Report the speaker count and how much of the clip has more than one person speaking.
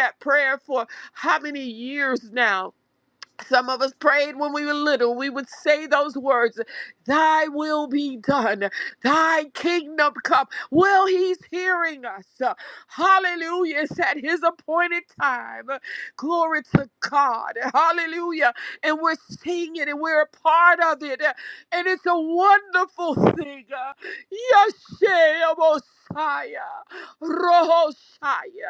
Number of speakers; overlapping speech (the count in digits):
1, no overlap